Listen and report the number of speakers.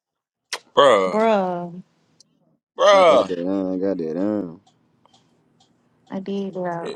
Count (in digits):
3